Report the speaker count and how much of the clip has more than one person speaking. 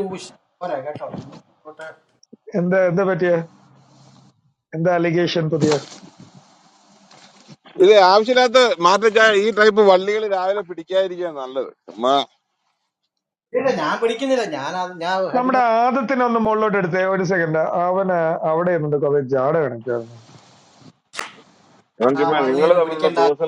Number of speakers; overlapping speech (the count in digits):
3, about 6%